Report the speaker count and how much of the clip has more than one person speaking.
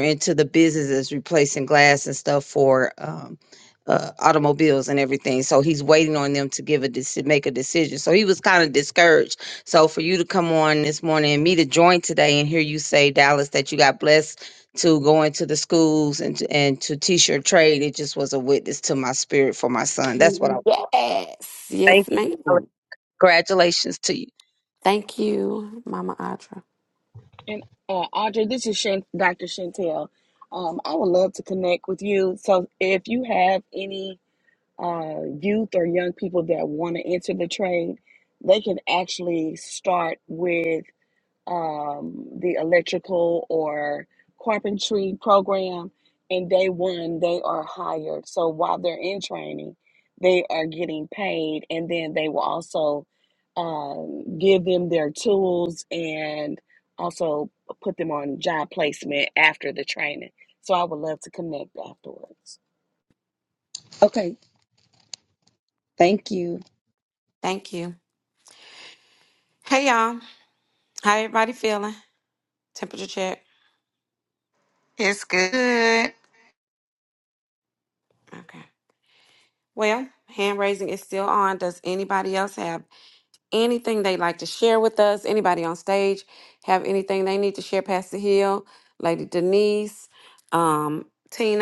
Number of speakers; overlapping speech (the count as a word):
four, about 1%